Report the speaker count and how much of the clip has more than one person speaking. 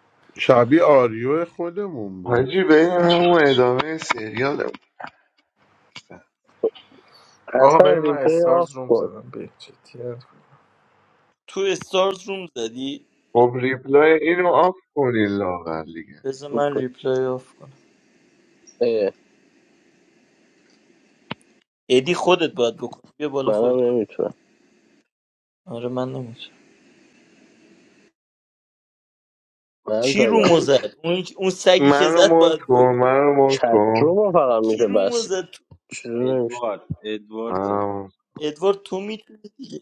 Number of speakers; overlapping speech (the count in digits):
6, about 14%